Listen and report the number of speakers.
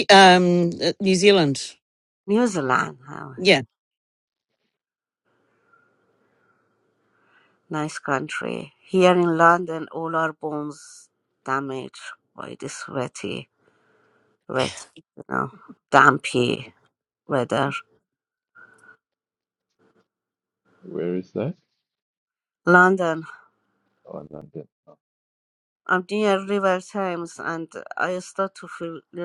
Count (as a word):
three